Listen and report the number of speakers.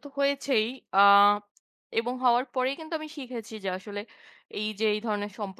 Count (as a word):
one